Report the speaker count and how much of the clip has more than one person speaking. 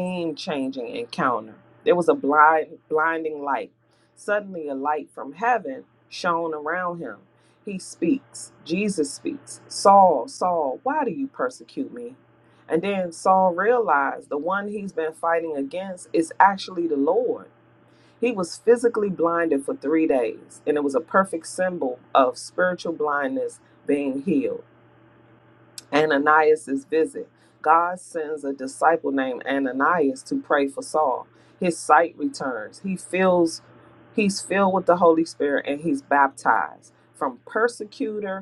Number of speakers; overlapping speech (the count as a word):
one, no overlap